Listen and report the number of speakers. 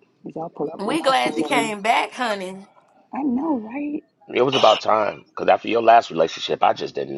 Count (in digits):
3